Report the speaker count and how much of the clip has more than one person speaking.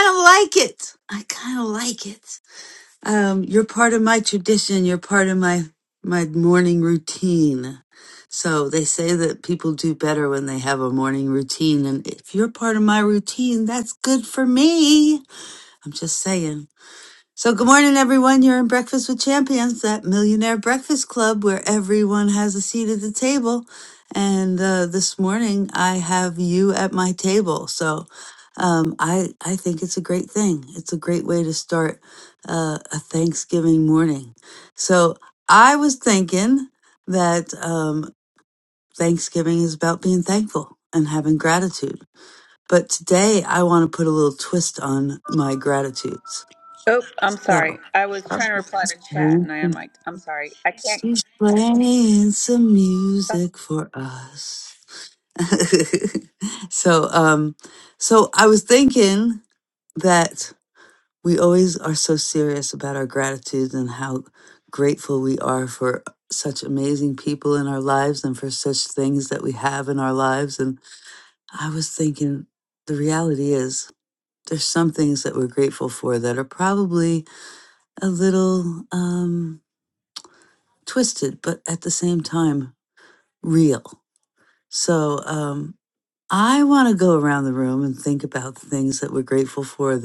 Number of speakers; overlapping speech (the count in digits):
2, about 2%